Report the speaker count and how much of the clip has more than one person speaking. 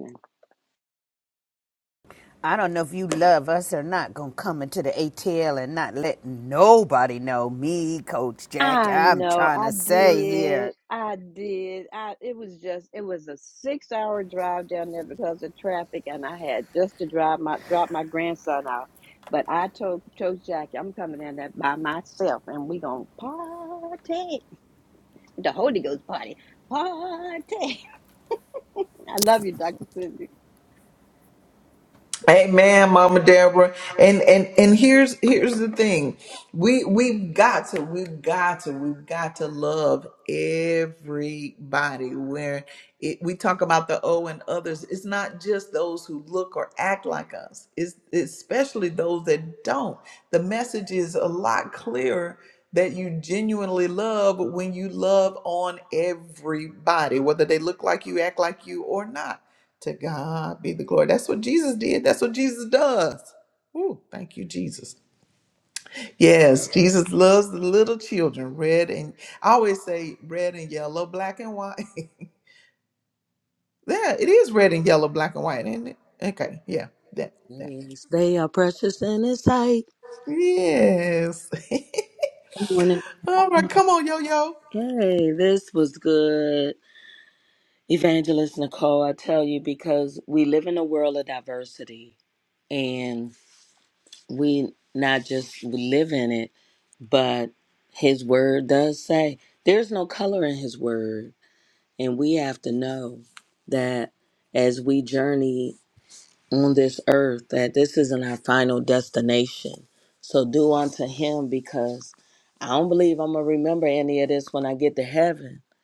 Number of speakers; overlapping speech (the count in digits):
4, about 2%